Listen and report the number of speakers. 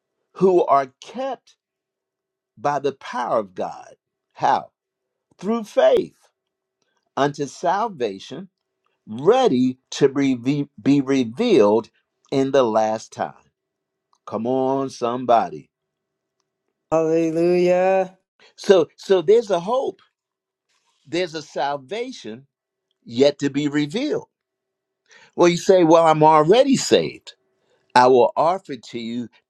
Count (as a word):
two